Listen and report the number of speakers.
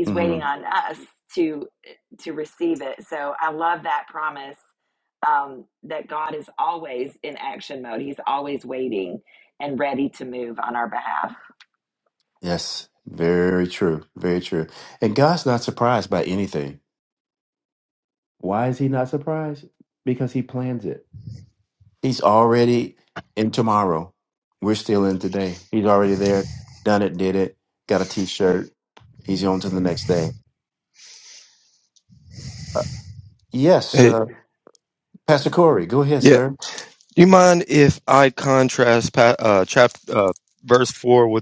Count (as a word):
three